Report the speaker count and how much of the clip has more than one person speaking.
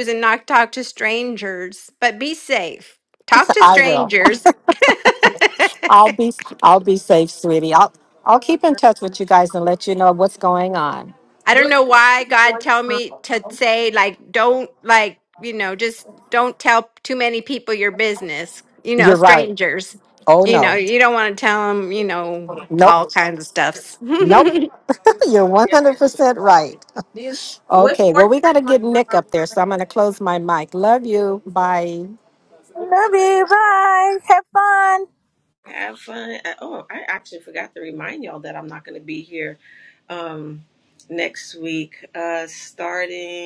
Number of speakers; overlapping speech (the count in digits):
4, about 7%